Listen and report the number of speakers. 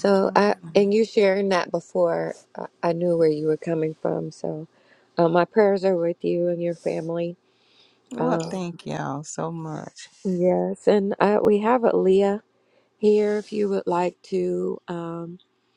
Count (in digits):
2